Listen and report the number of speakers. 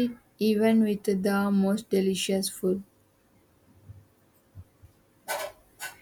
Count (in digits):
1